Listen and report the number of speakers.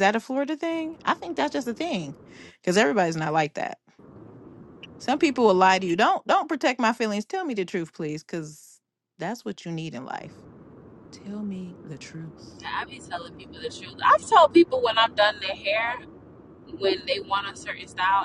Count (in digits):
2